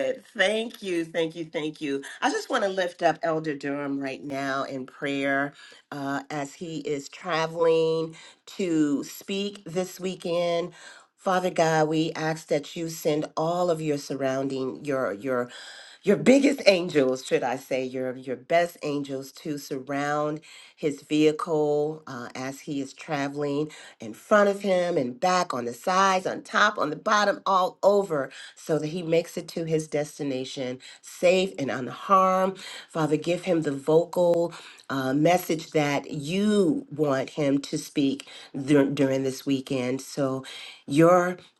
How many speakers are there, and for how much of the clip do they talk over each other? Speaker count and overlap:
one, no overlap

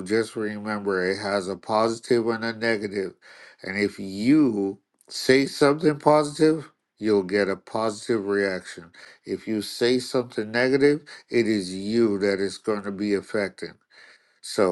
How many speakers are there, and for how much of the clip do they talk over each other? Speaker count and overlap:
one, no overlap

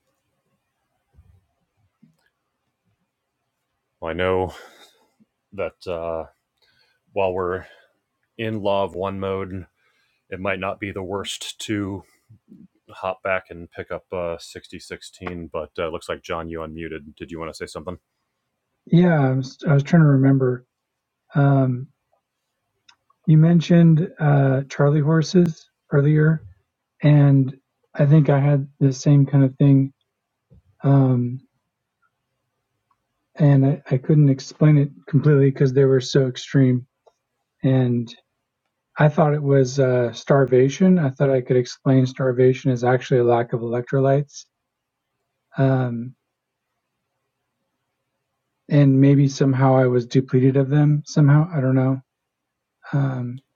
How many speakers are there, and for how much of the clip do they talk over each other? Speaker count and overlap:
two, no overlap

